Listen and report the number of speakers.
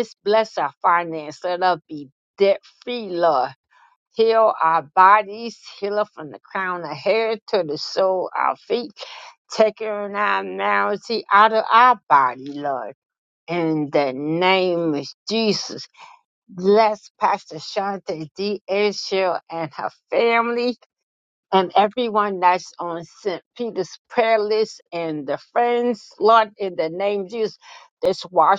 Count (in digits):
1